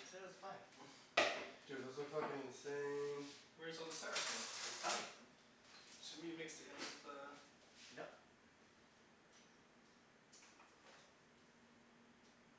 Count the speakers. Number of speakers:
3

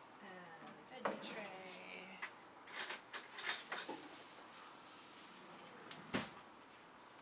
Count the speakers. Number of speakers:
1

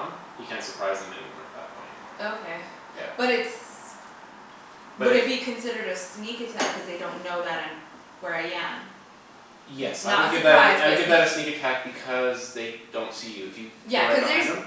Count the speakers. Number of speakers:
2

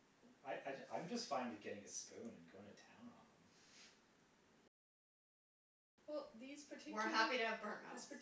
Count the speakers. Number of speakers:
3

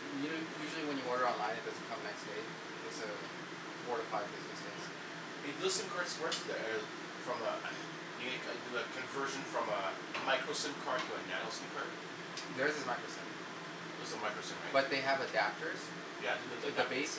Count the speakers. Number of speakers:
2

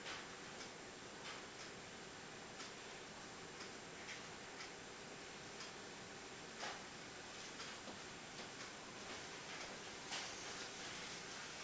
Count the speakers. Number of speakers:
0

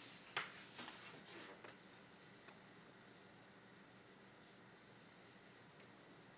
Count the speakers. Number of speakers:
0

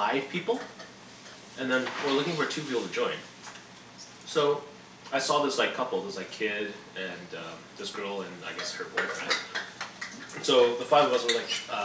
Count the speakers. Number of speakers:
1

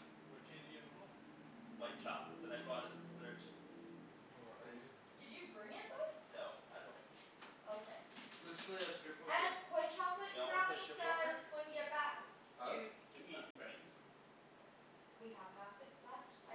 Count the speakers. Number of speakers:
4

